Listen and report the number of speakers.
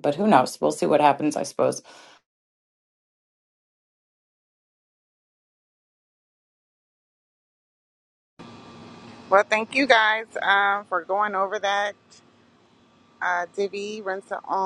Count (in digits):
2